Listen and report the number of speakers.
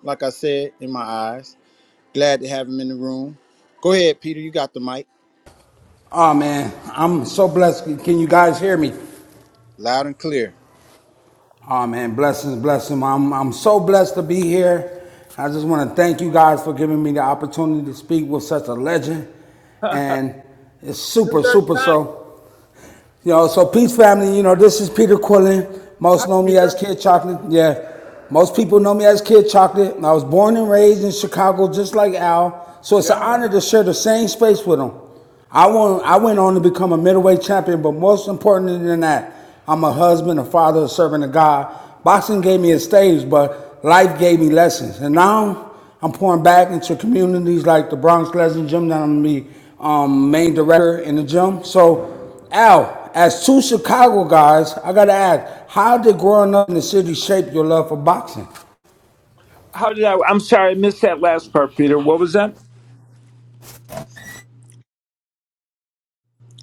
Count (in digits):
3